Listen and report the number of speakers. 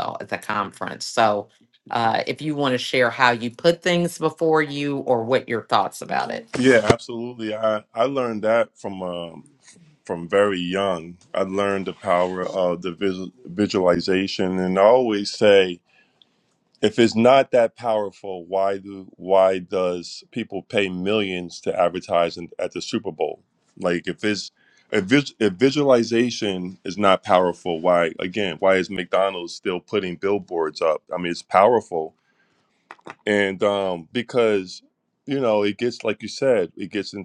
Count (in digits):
2